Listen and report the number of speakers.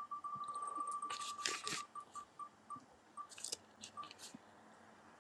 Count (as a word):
zero